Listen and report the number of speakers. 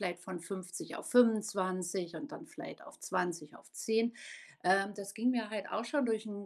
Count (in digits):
1